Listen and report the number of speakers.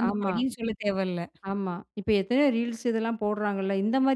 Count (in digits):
2